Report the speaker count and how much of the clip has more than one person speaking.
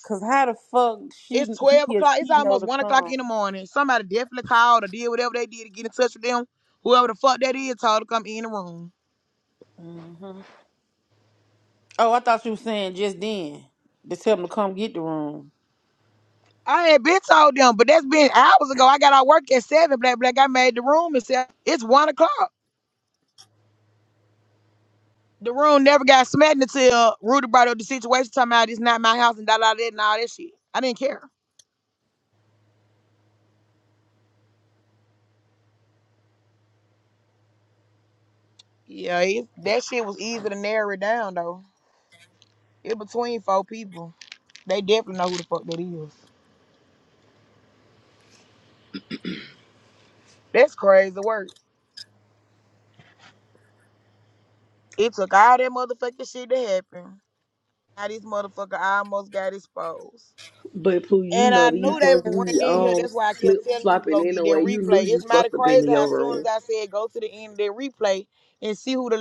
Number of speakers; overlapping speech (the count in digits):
3, about 10%